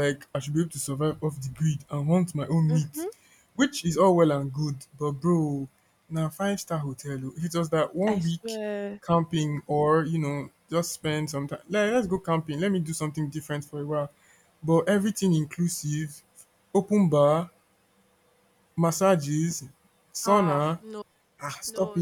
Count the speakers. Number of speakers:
two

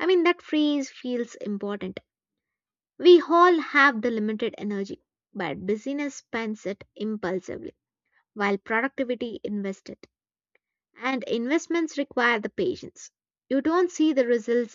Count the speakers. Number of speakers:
one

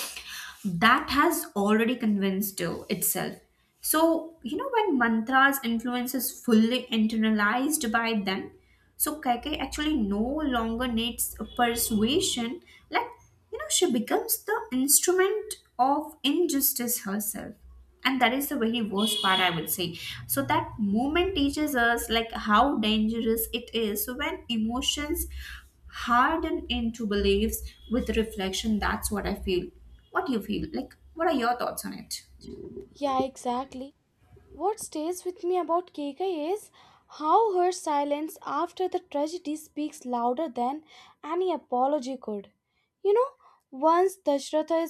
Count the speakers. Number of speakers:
two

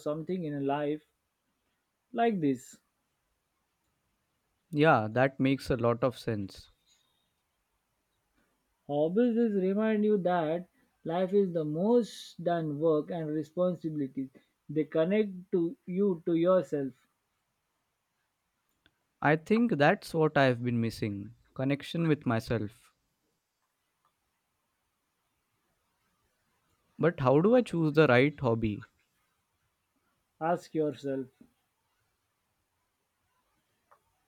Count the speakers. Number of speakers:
two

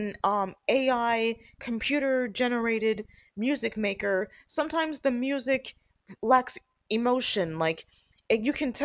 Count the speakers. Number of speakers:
one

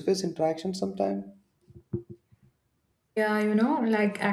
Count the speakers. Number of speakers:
two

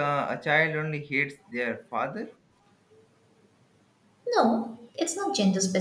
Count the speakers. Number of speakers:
two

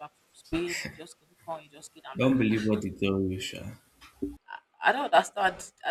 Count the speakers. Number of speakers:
two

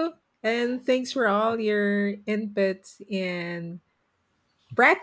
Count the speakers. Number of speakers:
one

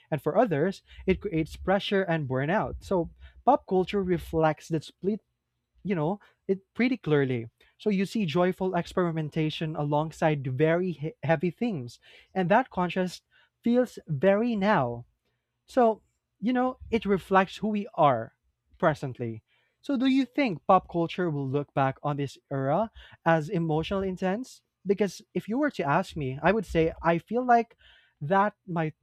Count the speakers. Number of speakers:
one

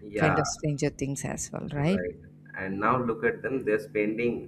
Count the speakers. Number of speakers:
two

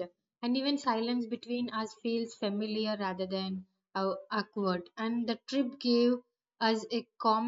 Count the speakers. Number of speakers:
one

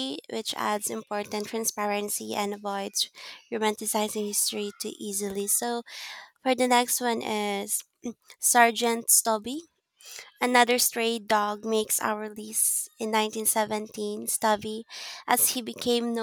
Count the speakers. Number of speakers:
one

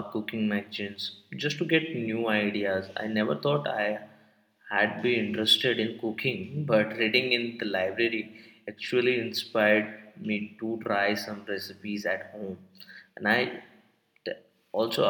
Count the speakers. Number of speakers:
one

